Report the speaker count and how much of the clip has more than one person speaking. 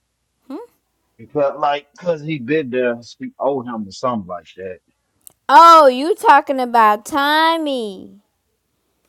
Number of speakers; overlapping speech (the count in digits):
2, no overlap